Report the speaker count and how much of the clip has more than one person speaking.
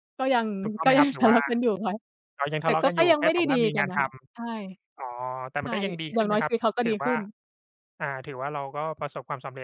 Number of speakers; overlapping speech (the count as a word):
two, about 31%